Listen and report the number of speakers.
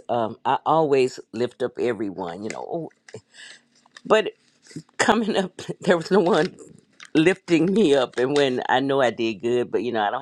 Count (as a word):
one